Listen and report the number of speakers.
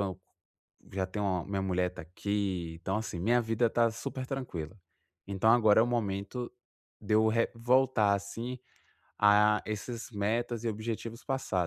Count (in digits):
1